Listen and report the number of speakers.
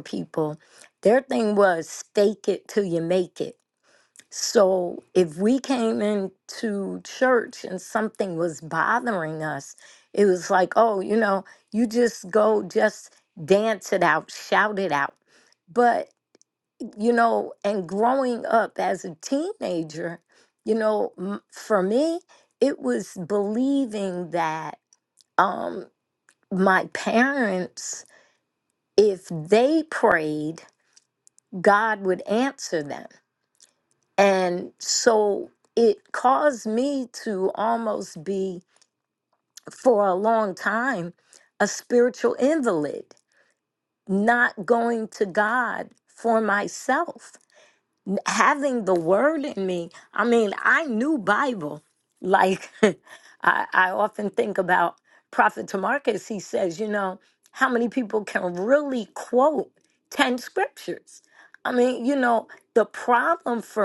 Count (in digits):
1